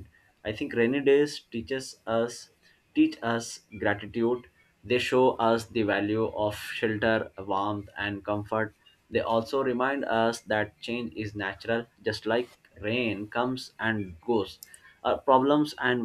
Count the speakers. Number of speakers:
one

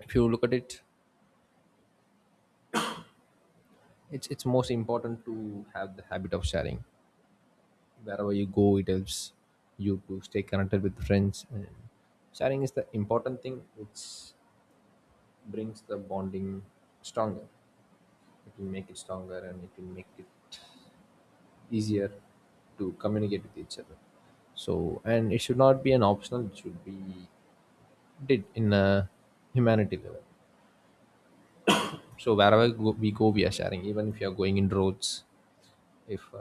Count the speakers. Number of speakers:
one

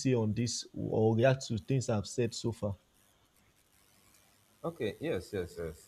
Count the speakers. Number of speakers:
two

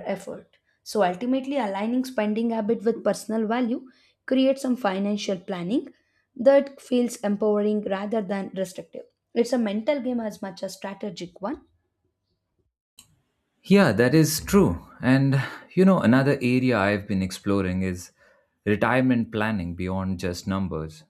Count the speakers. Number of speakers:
two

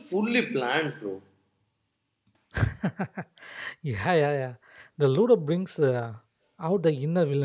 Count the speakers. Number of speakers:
two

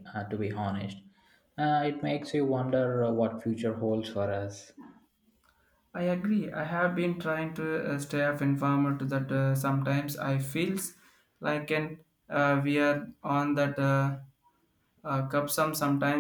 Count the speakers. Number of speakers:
two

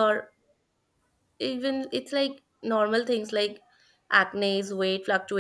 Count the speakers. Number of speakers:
one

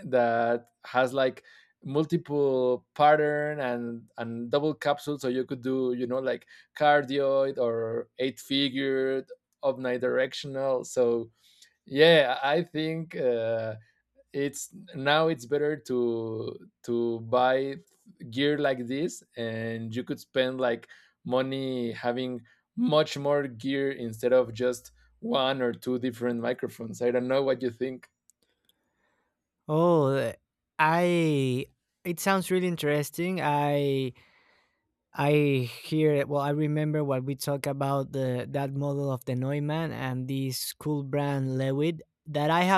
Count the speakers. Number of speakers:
two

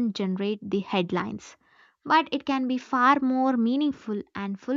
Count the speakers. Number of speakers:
one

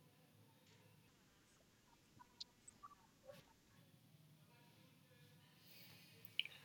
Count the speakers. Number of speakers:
zero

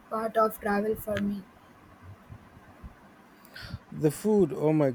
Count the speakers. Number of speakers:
two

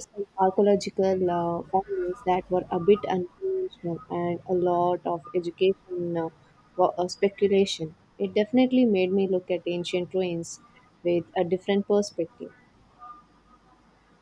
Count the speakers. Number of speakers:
one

